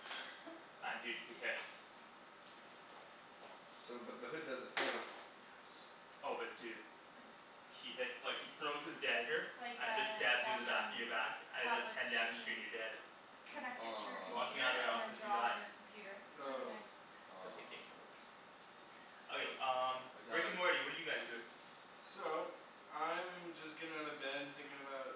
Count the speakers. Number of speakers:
four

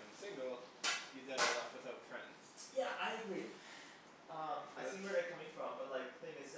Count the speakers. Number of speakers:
two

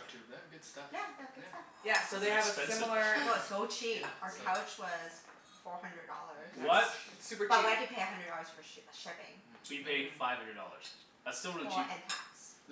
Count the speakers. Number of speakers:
four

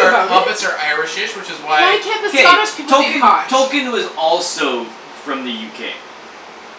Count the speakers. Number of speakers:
three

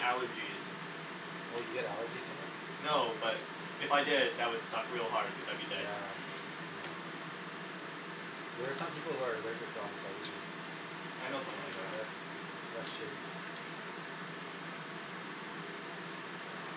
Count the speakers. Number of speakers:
two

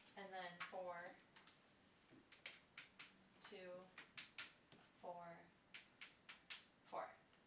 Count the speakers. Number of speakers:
one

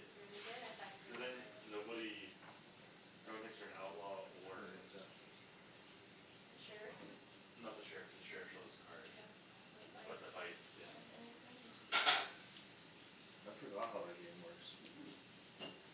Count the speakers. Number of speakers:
three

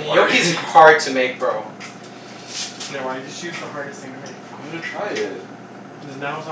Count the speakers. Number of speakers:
three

